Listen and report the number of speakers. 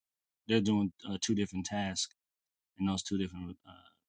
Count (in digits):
1